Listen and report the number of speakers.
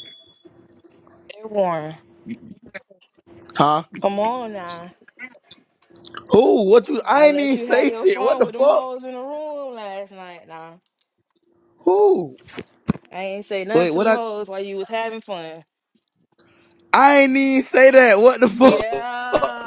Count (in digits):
2